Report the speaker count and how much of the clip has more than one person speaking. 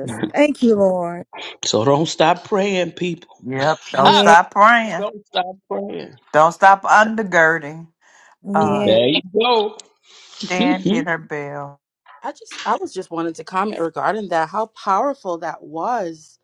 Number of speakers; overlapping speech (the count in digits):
4, about 7%